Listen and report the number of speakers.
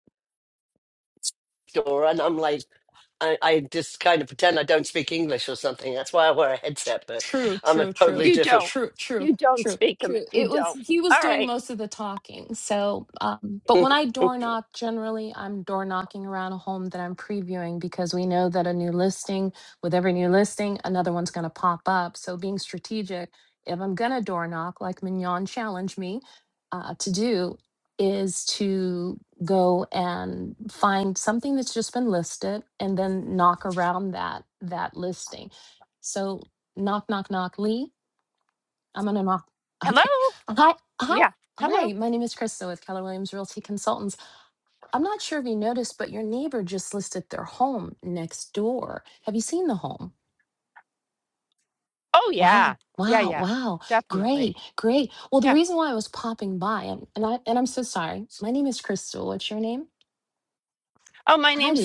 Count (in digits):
3